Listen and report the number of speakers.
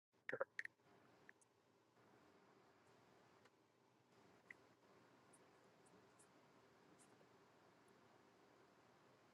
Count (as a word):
zero